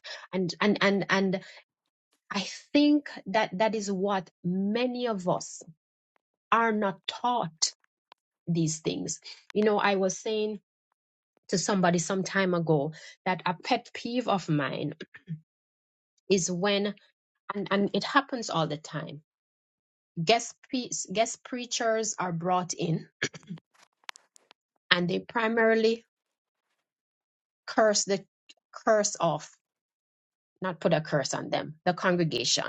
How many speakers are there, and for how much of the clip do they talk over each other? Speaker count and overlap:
one, no overlap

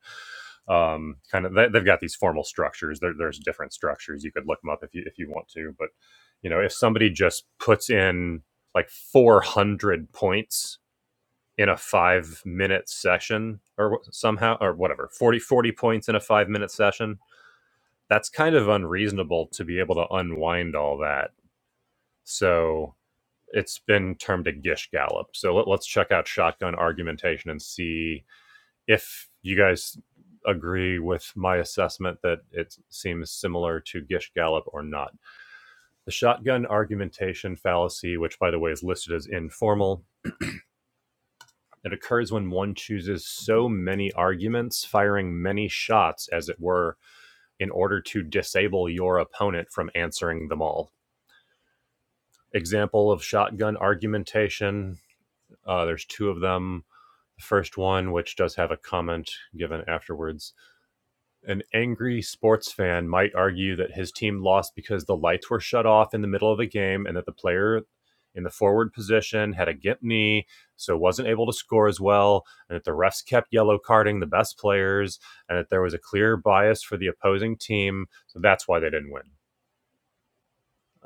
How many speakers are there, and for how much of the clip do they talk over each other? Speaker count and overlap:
one, no overlap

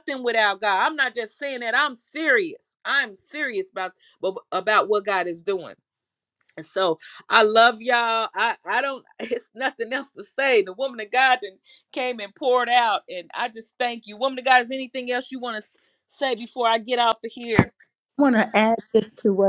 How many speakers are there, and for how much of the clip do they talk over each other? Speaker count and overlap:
two, no overlap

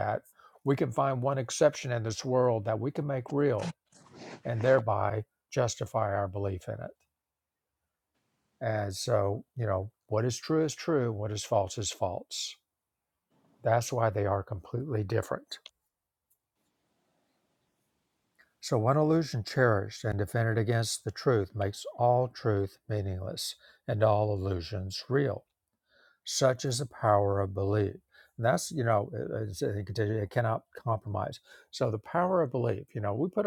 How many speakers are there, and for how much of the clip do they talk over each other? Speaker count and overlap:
one, no overlap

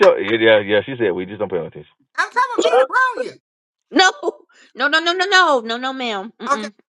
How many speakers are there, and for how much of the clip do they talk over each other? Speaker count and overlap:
three, about 3%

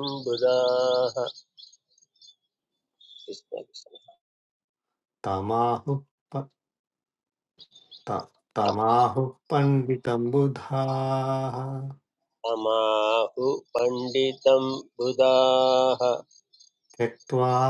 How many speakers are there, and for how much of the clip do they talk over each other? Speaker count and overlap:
two, no overlap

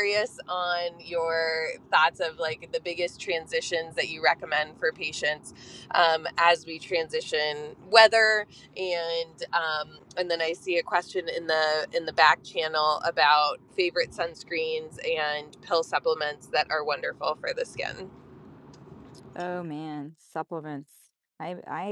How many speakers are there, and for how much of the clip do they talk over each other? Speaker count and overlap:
two, no overlap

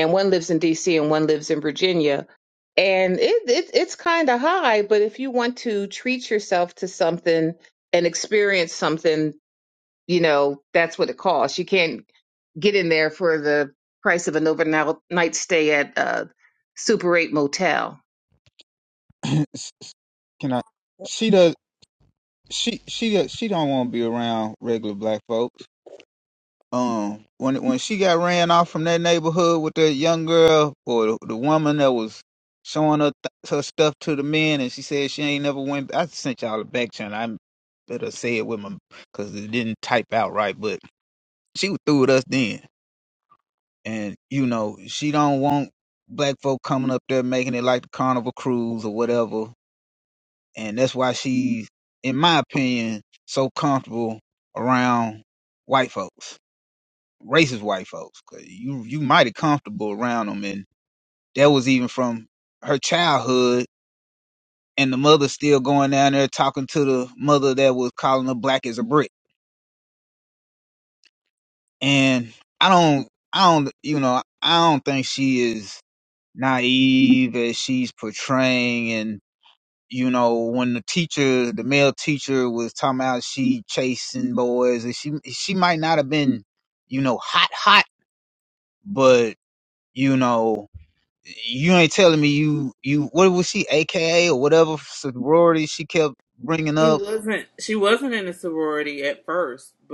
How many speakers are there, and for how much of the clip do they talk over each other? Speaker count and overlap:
three, under 1%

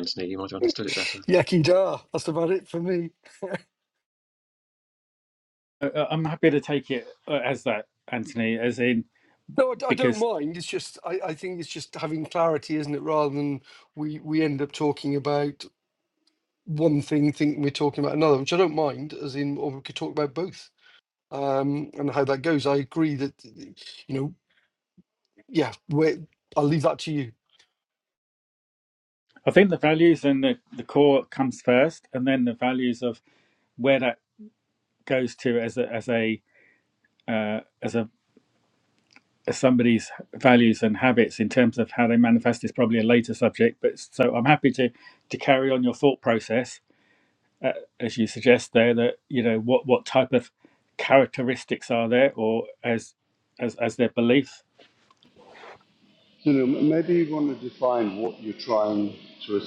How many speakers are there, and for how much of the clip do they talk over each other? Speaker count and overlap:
four, about 1%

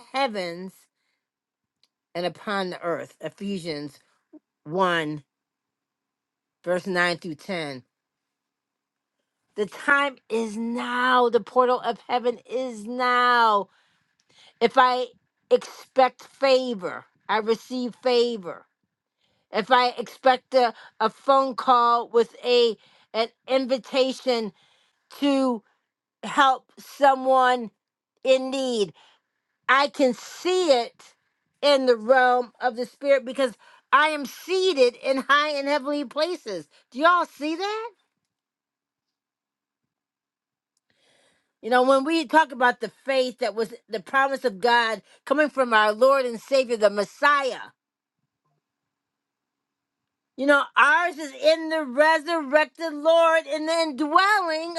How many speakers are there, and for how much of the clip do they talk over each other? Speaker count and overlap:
one, no overlap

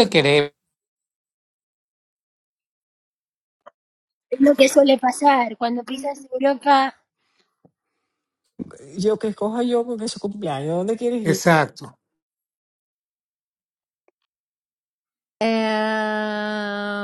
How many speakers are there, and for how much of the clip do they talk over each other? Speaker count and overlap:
four, about 1%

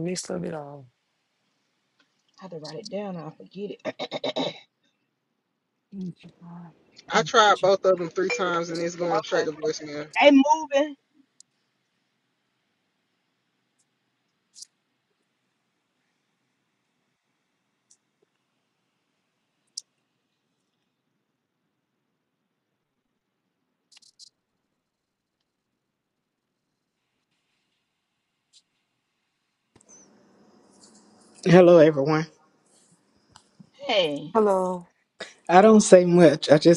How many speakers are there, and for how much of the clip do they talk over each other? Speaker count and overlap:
four, about 2%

